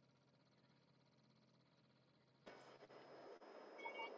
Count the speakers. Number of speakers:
0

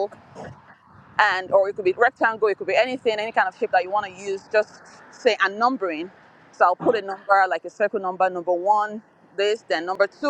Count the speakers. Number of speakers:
1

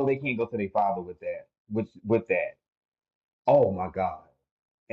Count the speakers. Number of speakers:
1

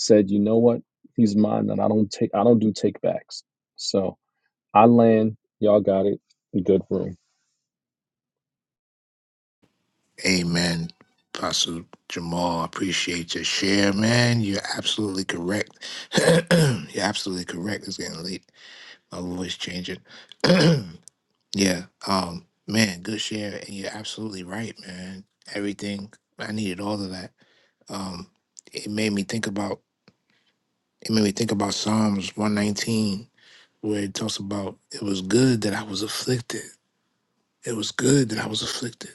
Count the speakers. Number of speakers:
2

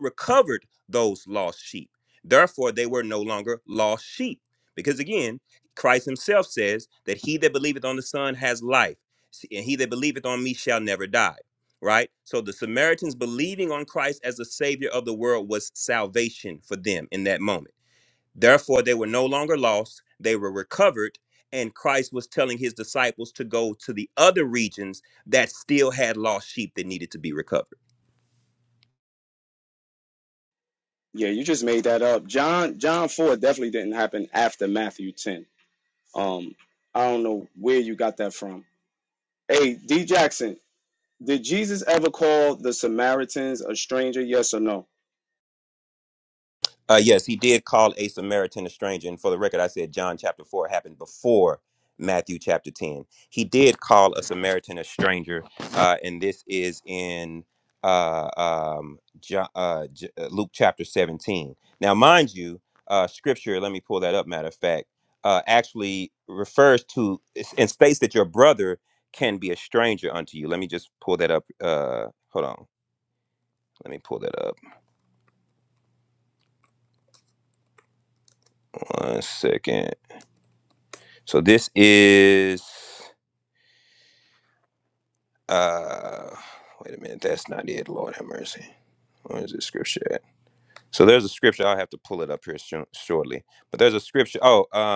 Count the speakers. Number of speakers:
2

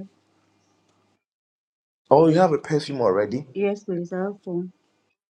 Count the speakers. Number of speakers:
2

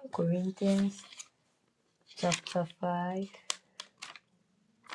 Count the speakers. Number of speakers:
1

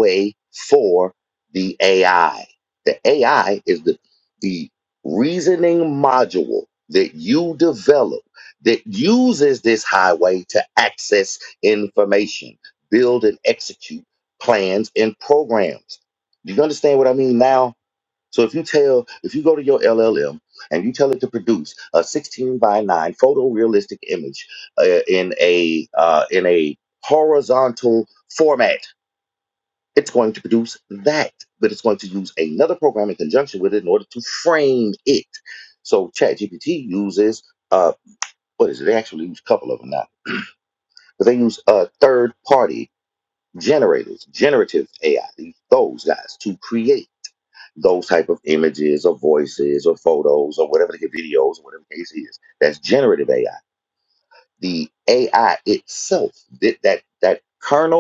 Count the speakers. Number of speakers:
1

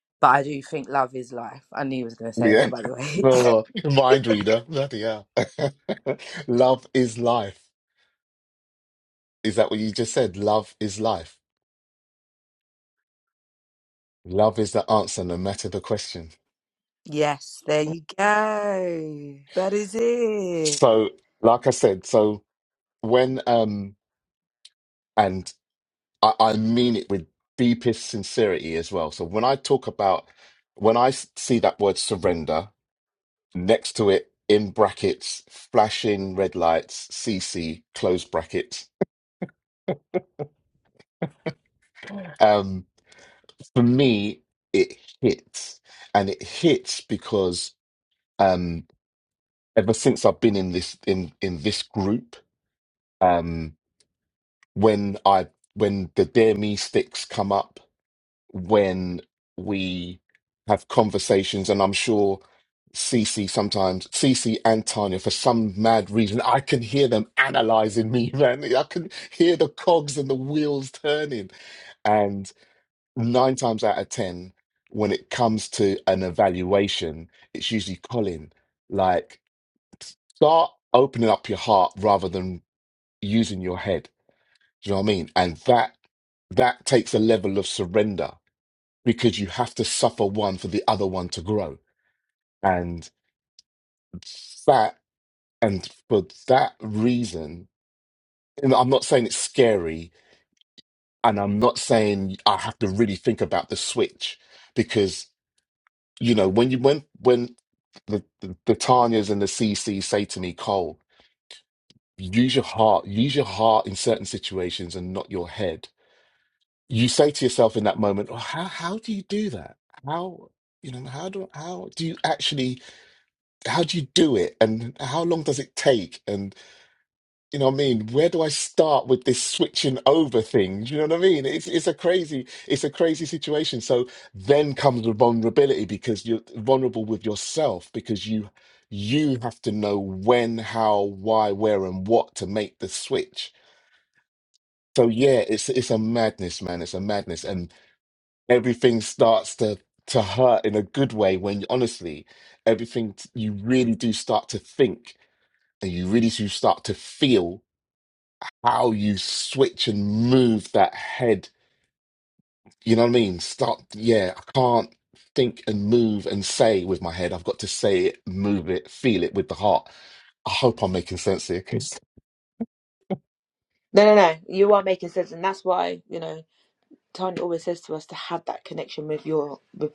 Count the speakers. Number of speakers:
3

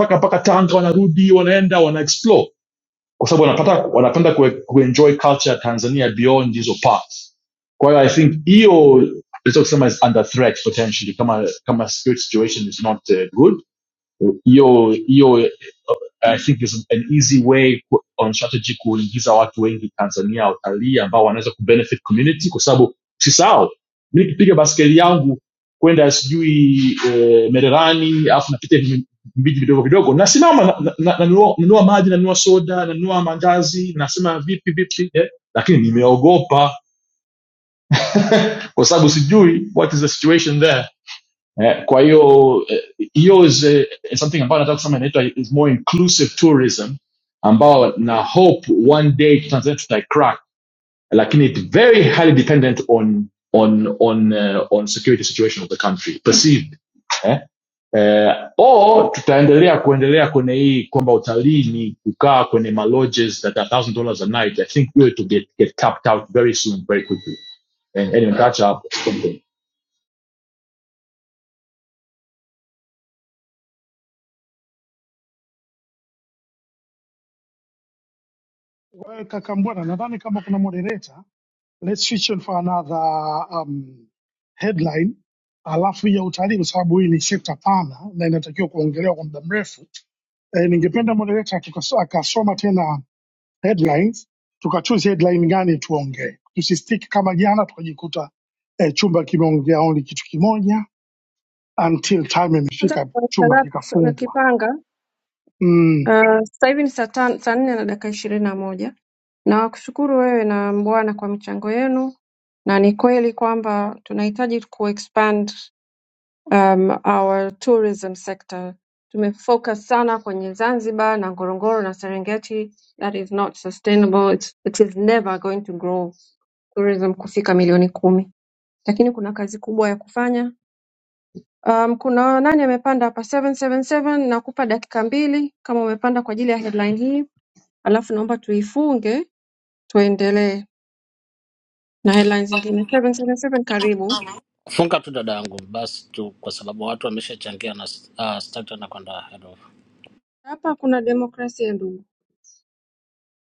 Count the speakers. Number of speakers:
4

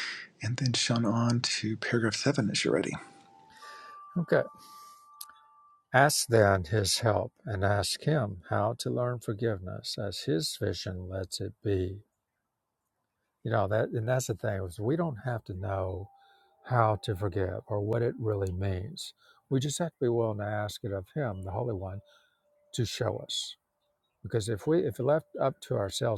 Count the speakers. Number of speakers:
2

